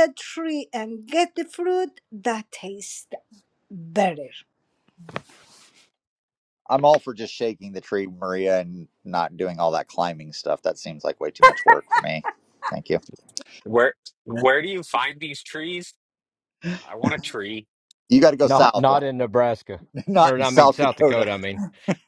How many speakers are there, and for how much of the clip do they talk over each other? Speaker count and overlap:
four, about 7%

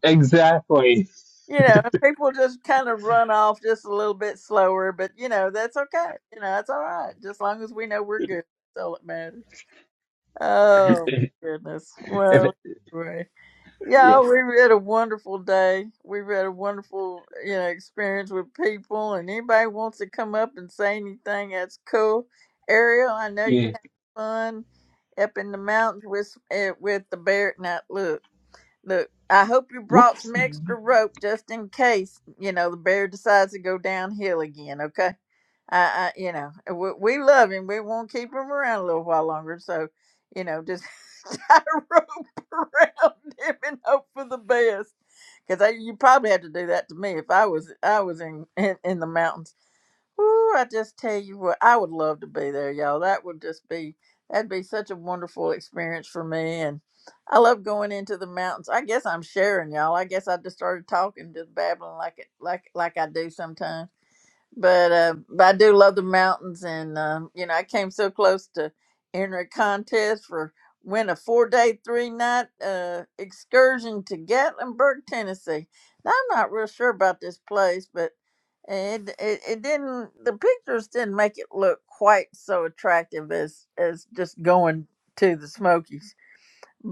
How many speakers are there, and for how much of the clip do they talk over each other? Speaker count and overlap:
two, about 1%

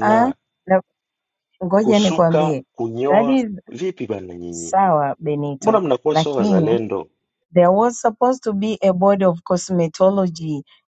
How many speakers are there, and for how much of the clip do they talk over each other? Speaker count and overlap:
two, about 21%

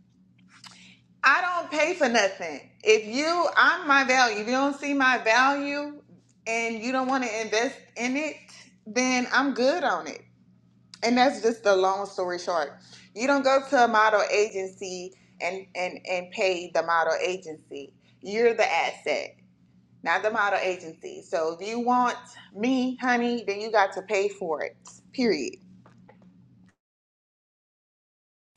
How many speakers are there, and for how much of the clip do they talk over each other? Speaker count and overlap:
one, no overlap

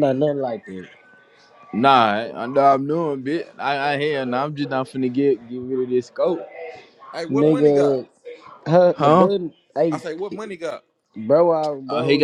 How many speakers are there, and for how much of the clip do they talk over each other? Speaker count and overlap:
three, about 12%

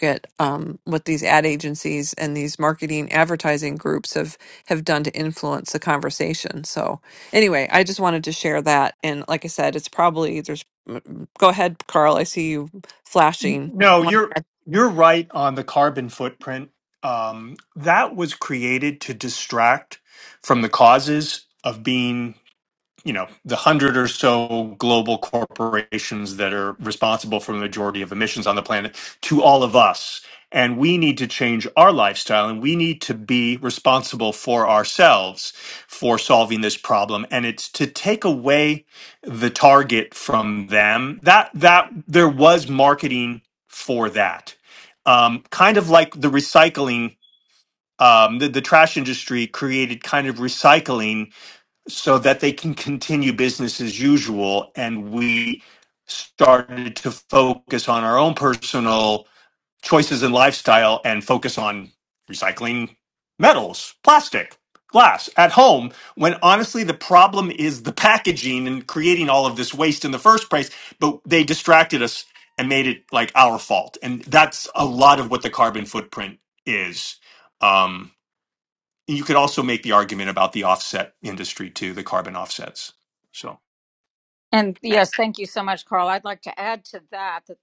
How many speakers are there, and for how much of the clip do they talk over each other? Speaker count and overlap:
three, under 1%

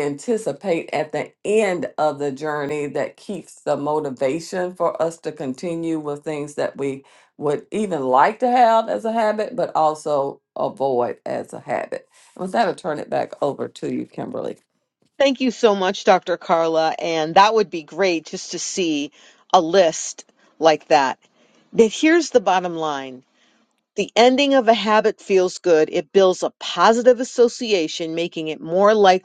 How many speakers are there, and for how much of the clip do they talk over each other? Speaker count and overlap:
two, no overlap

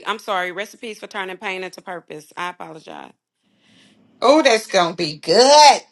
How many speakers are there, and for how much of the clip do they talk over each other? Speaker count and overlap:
two, no overlap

